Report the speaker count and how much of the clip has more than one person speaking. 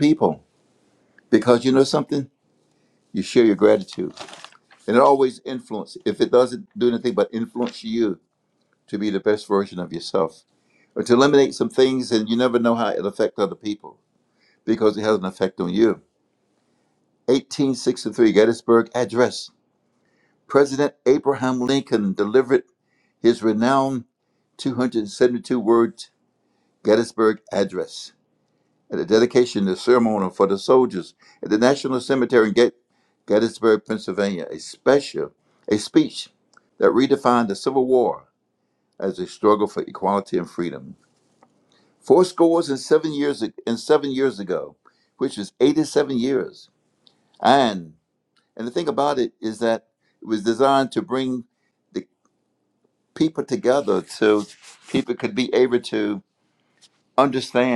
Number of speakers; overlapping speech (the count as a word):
one, no overlap